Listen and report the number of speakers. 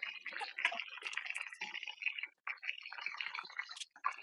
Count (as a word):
zero